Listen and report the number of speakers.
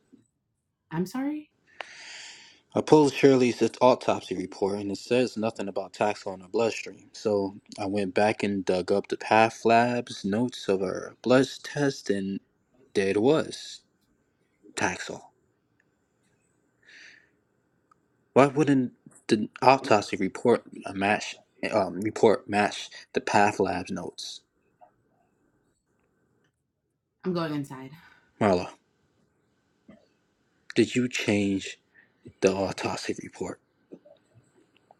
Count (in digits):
2